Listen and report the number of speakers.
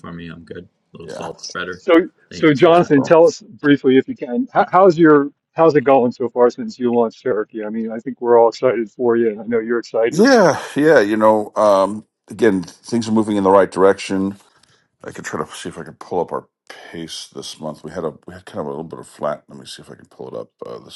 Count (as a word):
three